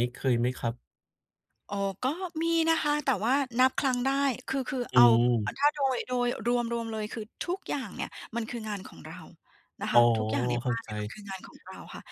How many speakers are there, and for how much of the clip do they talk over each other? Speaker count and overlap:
two, about 5%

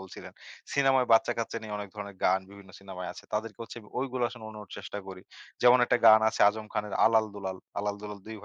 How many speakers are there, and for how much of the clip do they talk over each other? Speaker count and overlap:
one, no overlap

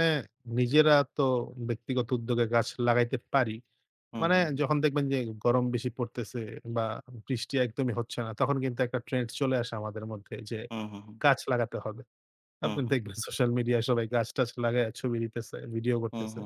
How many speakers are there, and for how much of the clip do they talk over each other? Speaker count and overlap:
two, about 5%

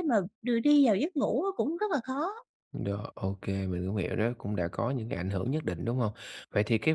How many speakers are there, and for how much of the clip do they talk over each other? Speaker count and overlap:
two, no overlap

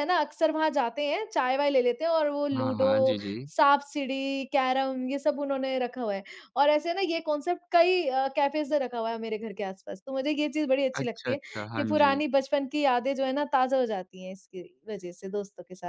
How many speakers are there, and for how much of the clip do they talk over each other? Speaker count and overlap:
two, about 10%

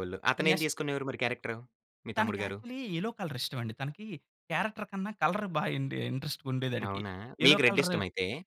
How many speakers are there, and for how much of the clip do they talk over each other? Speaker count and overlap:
two, about 17%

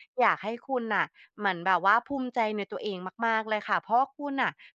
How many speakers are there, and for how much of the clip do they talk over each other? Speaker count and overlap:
one, no overlap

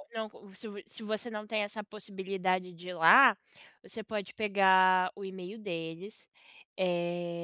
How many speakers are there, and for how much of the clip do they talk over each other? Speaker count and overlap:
one, no overlap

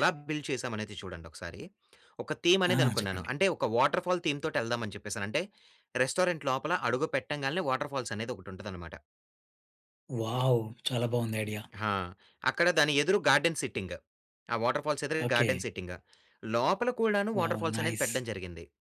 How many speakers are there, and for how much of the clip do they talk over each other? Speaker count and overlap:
two, about 10%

